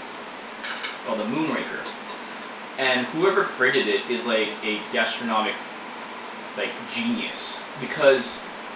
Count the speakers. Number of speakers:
1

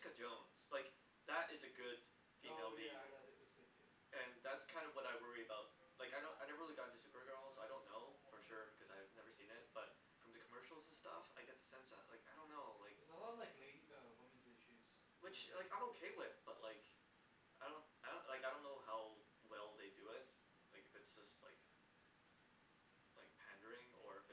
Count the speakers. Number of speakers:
2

